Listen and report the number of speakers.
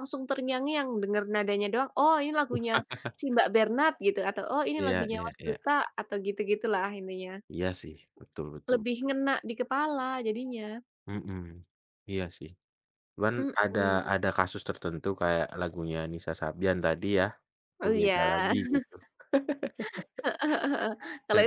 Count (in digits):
2